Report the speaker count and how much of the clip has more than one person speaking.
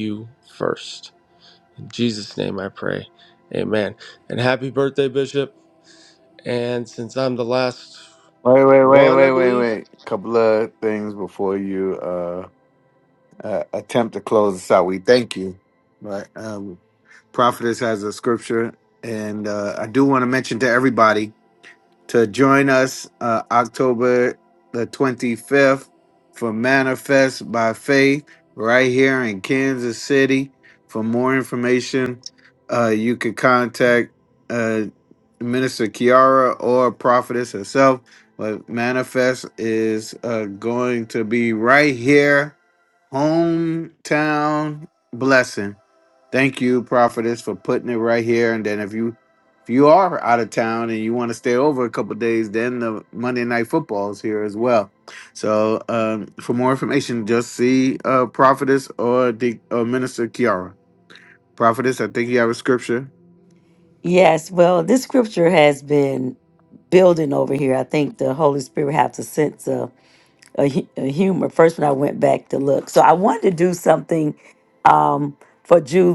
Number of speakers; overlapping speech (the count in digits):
3, about 1%